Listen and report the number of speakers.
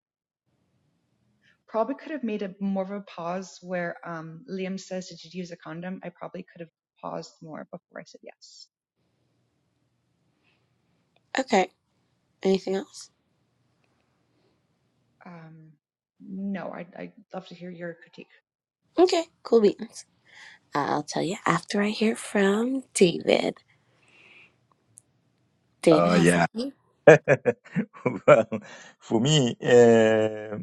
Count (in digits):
3